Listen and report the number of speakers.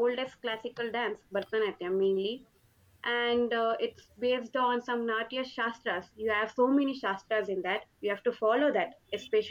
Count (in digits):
1